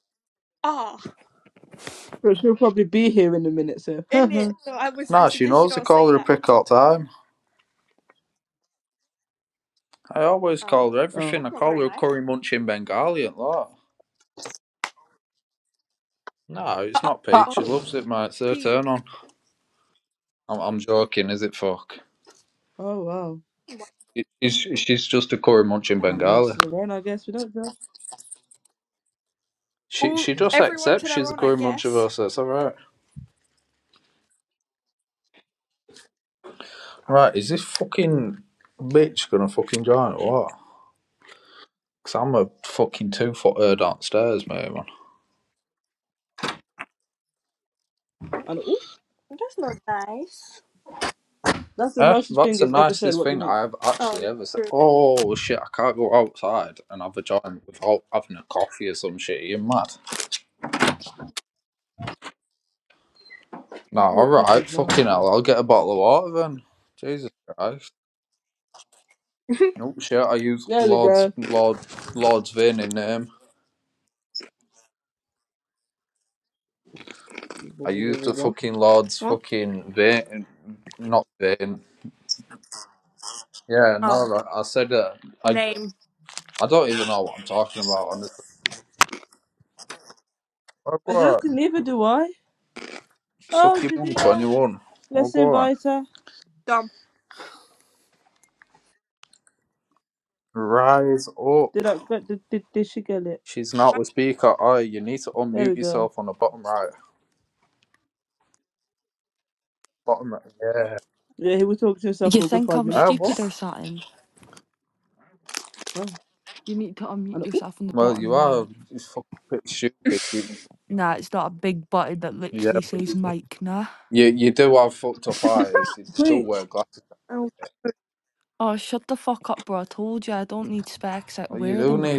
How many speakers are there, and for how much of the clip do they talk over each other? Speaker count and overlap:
4, about 13%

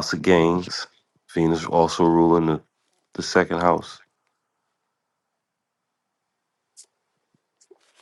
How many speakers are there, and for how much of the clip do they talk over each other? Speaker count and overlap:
1, no overlap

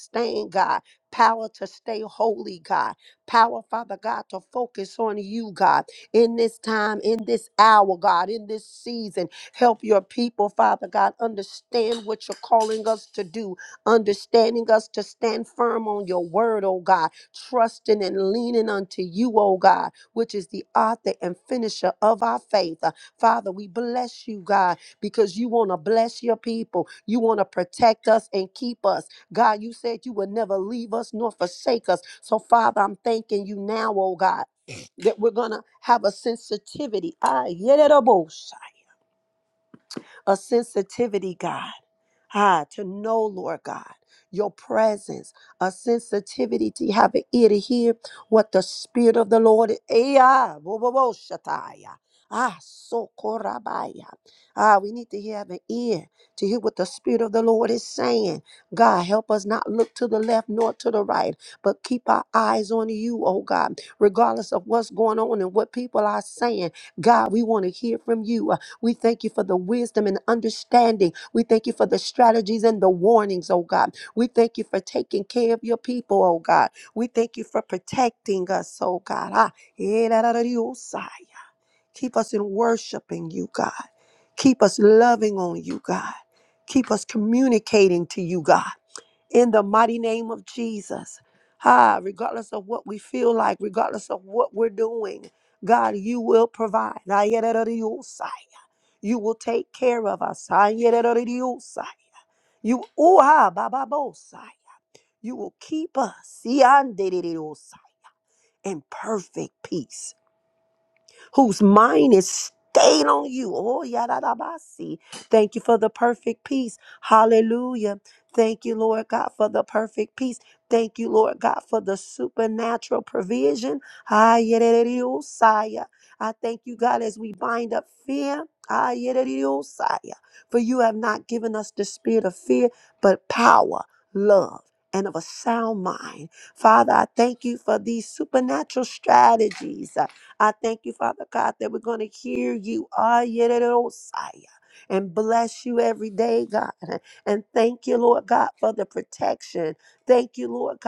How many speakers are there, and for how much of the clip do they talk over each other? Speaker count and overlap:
1, no overlap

